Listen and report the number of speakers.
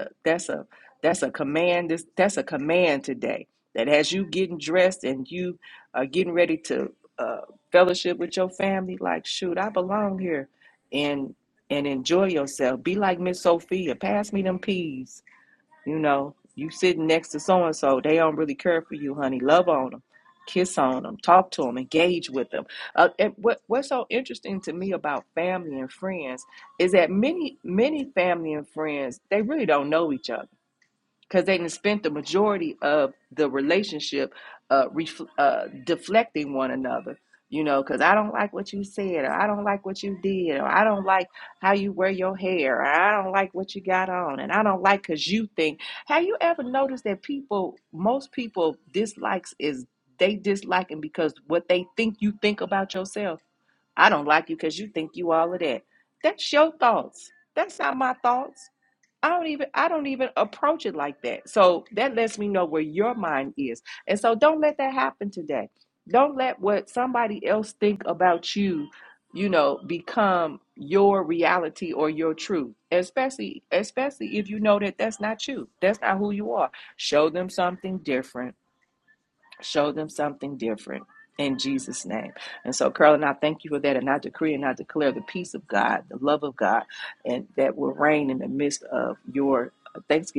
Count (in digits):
1